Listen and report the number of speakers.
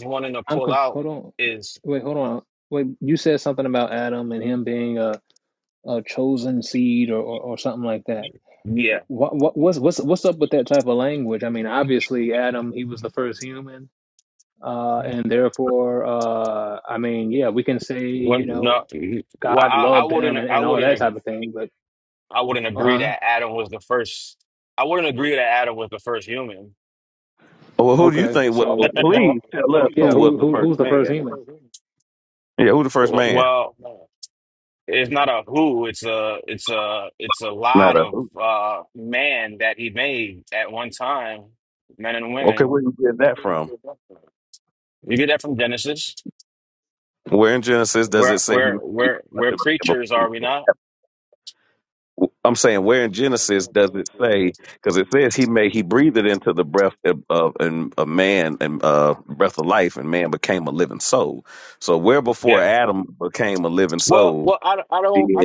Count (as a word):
three